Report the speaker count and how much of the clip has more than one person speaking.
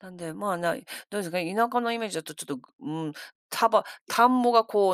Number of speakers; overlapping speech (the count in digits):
1, no overlap